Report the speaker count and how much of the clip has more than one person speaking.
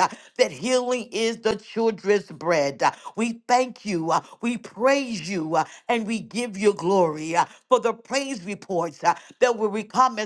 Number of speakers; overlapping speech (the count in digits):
1, no overlap